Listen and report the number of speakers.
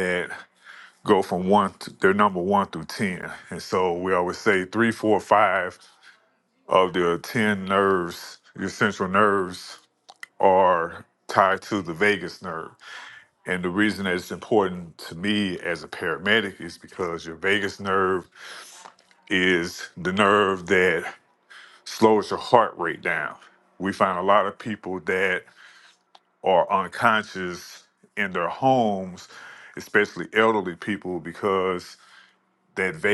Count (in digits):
1